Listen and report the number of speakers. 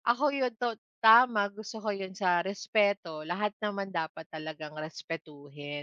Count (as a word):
one